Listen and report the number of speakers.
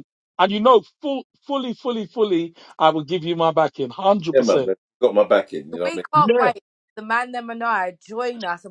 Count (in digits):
3